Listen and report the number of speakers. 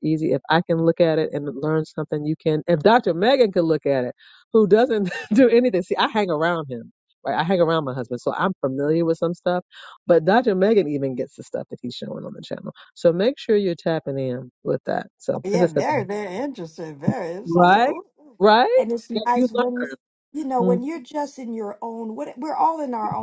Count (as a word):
two